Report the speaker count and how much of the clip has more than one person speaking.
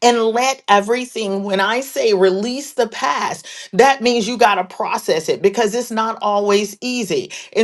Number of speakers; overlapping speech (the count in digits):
1, no overlap